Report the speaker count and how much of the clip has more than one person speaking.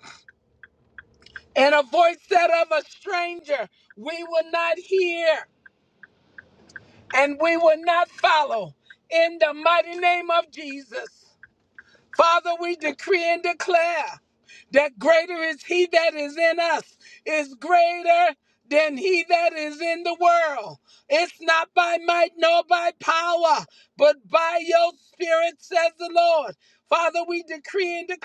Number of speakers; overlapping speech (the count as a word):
one, no overlap